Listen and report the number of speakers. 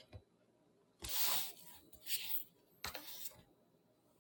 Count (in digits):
0